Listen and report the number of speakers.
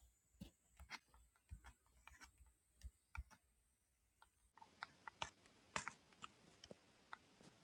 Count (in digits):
0